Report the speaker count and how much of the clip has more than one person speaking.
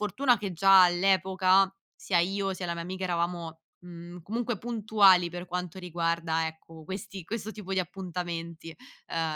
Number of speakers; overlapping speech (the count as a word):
one, no overlap